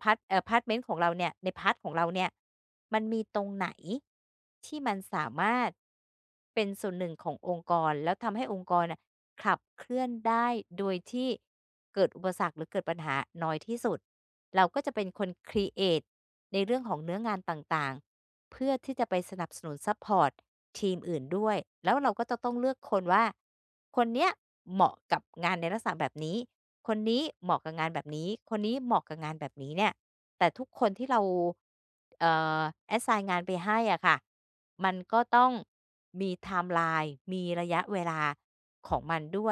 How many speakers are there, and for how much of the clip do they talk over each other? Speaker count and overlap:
one, no overlap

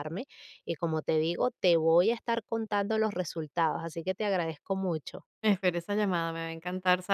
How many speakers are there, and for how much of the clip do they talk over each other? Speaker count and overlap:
two, no overlap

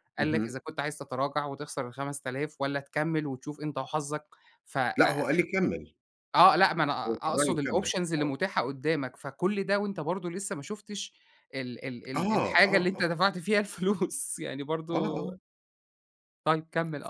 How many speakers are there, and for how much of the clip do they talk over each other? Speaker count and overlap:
two, about 12%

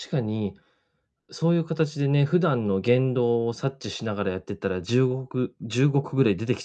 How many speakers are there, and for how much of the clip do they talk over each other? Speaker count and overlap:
one, no overlap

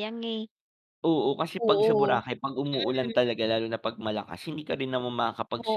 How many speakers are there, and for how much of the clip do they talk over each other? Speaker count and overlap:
two, about 17%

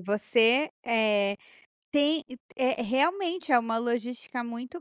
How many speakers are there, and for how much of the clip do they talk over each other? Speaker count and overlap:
one, no overlap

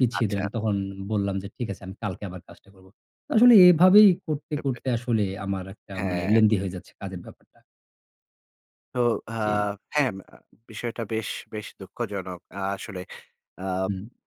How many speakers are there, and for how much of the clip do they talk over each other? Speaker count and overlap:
two, about 7%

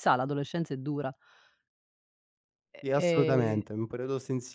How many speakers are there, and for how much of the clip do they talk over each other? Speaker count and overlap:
two, about 18%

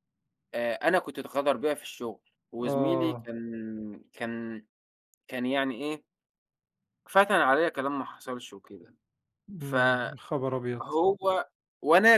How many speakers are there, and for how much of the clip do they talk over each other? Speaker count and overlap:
two, about 6%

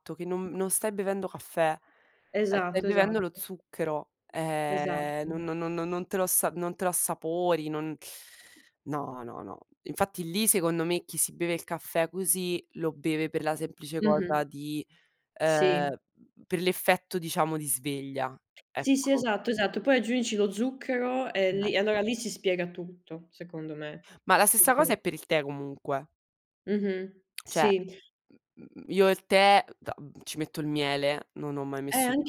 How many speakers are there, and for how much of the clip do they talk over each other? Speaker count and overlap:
two, about 9%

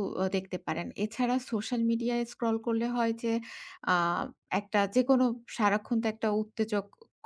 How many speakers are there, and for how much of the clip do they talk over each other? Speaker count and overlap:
one, no overlap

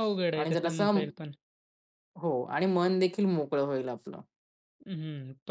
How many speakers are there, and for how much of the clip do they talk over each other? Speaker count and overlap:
two, about 13%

